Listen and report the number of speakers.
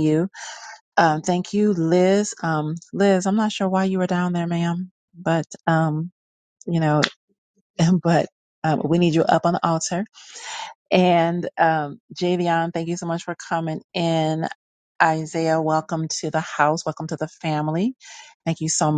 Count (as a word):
one